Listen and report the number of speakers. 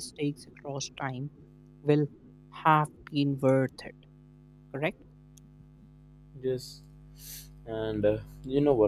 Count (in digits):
2